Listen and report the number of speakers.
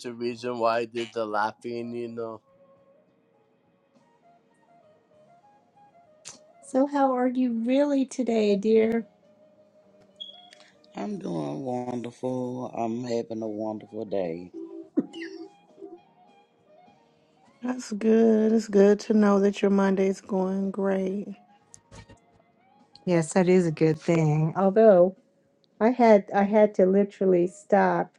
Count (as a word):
four